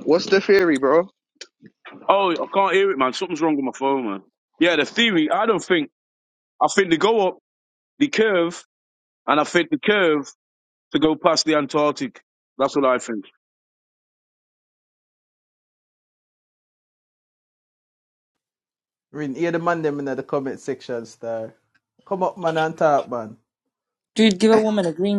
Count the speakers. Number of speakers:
4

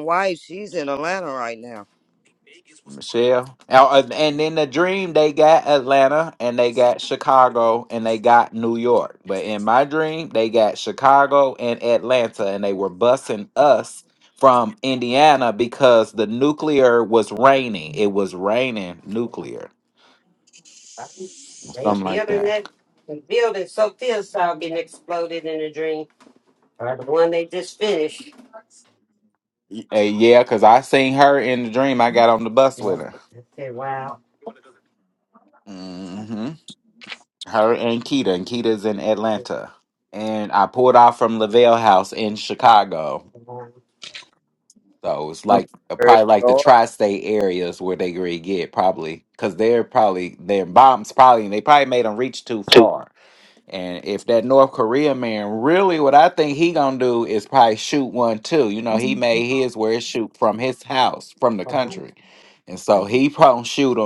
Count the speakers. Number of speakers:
3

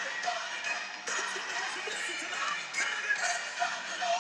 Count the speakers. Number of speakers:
0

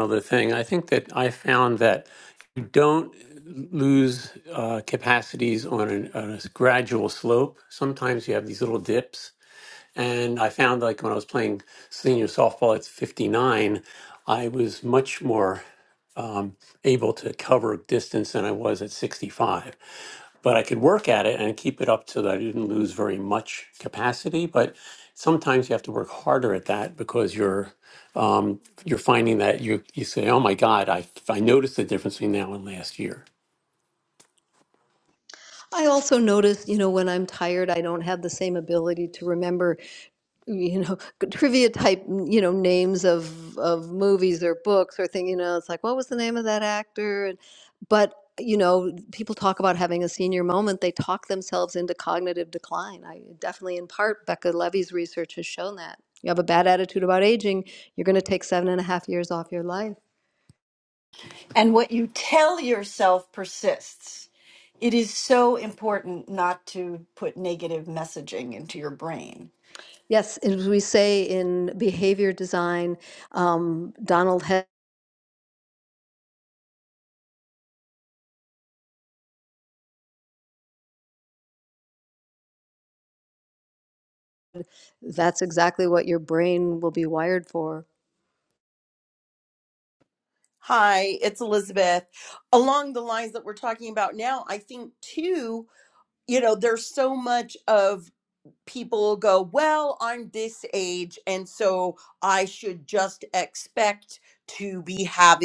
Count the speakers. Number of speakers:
4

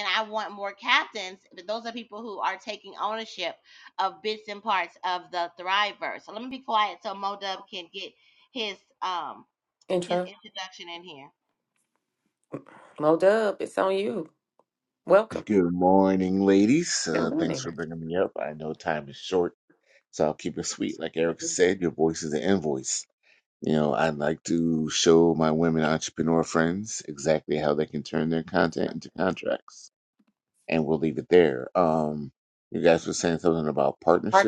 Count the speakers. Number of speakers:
3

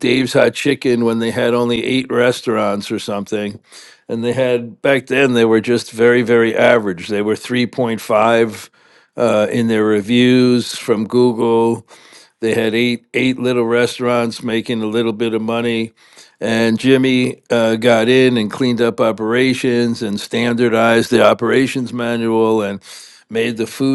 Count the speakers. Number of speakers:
1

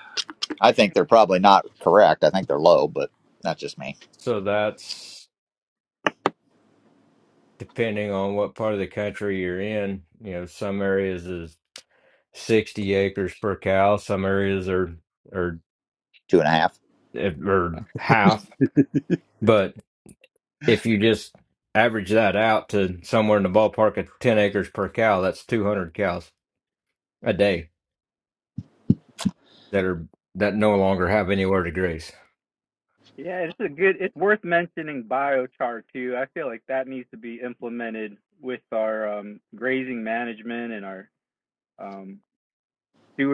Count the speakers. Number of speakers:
3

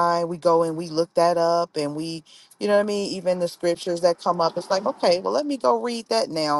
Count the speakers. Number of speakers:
1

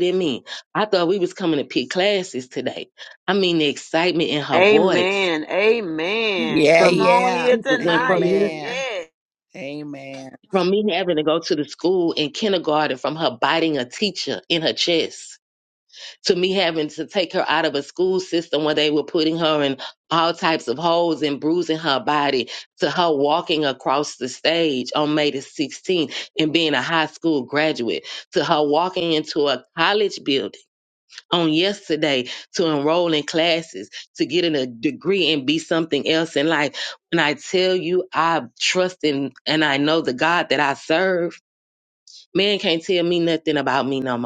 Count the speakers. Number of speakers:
3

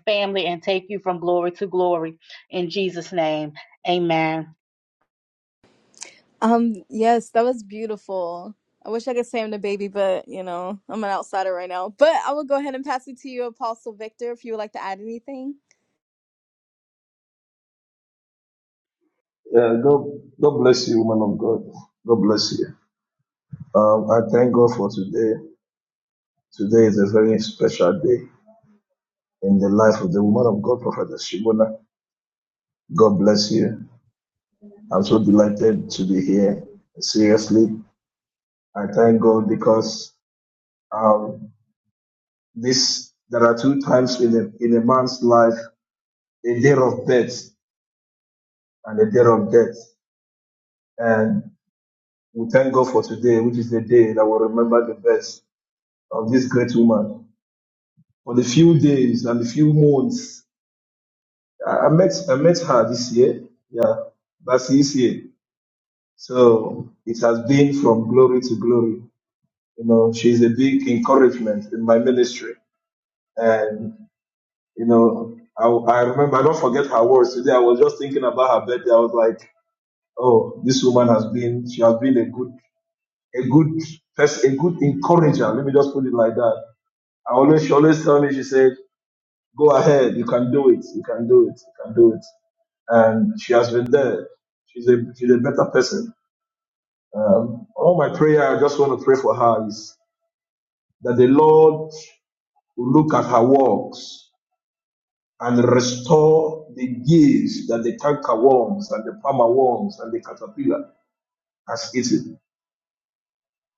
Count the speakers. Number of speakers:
3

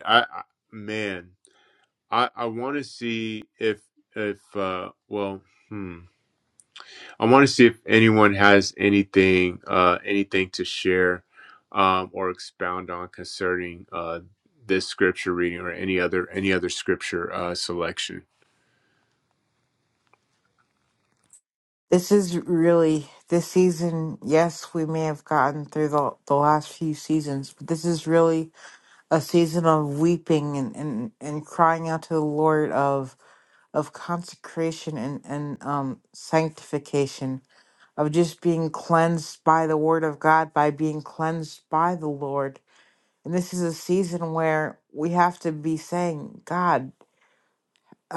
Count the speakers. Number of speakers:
2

